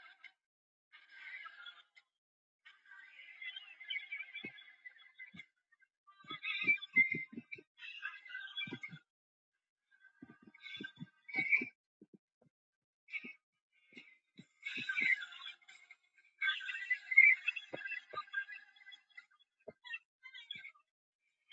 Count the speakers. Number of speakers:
0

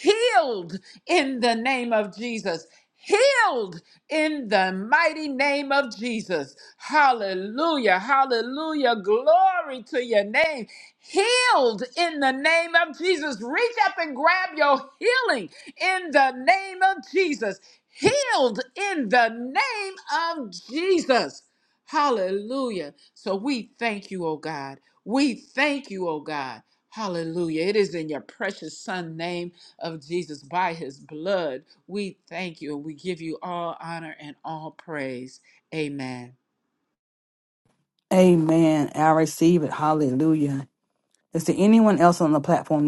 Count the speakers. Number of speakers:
2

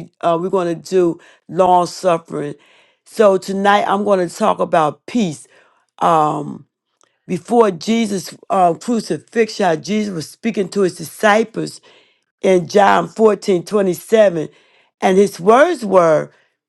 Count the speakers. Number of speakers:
1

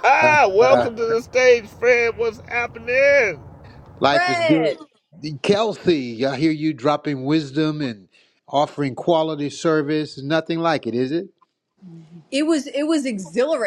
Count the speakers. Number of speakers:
3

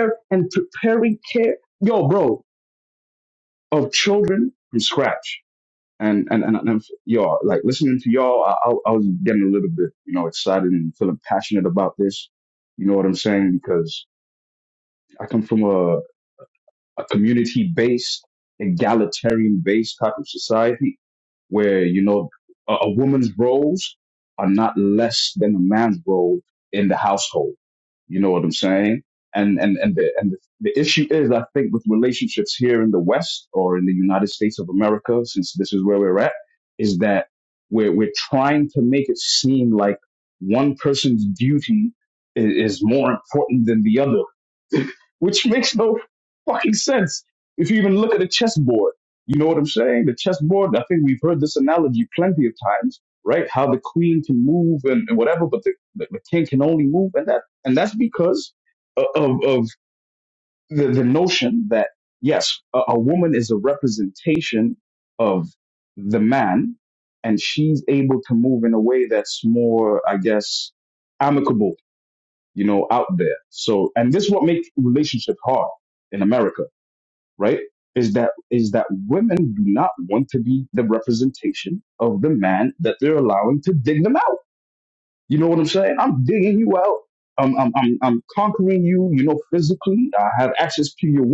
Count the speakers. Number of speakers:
1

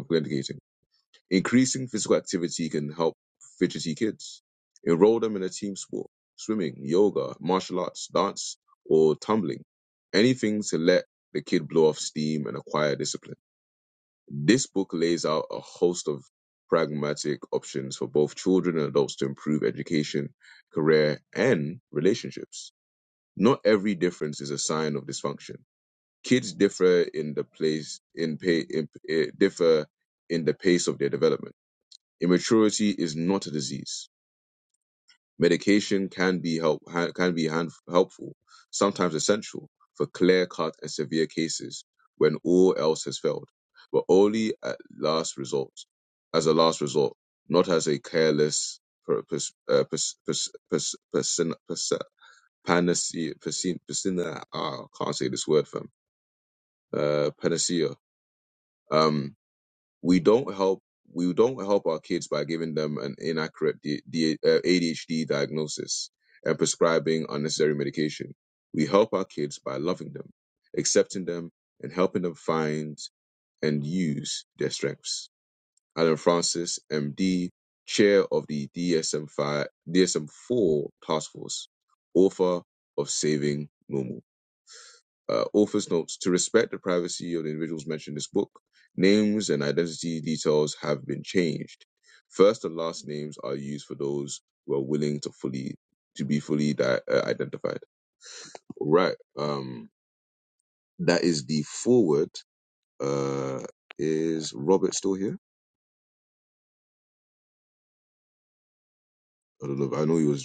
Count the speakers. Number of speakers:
1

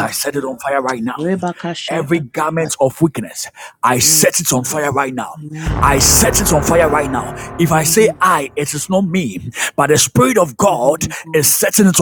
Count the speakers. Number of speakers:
2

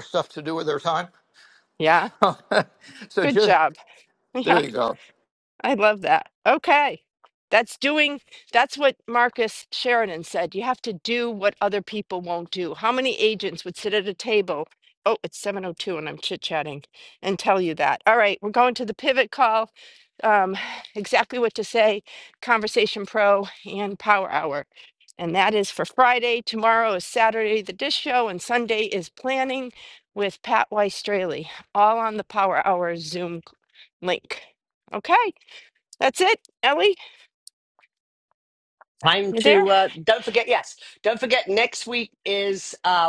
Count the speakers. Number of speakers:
3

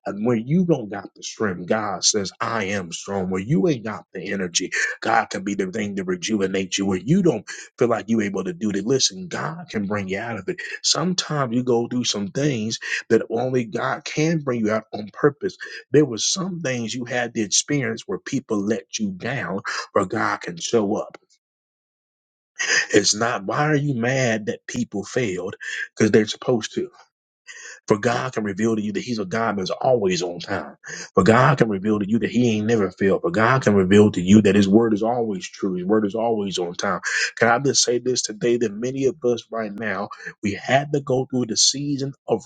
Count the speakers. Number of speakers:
1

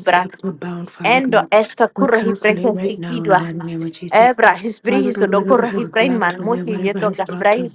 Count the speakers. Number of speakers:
2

